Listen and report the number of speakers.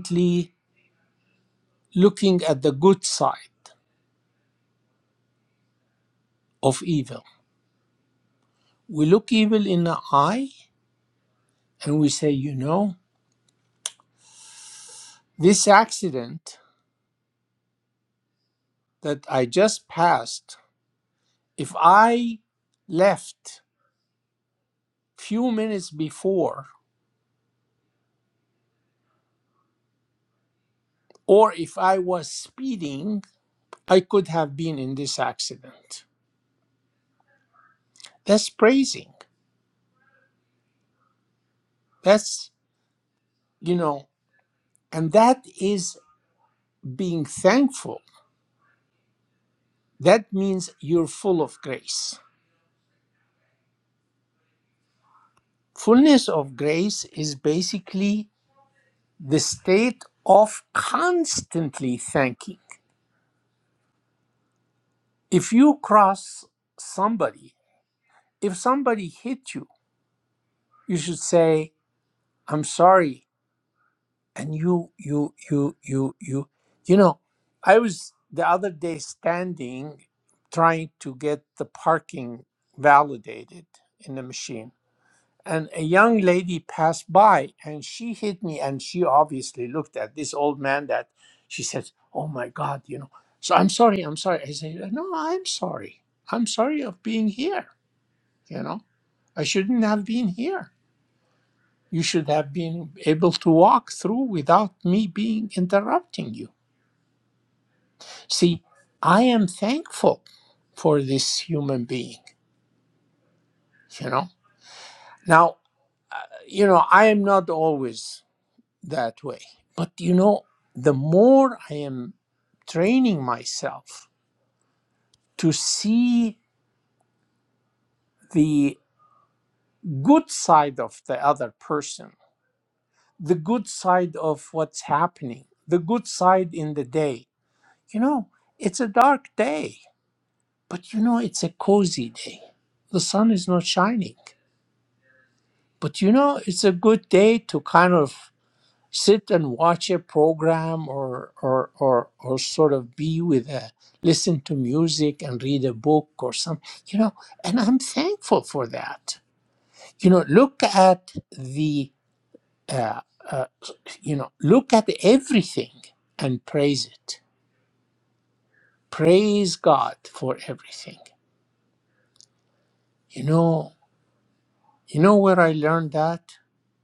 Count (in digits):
1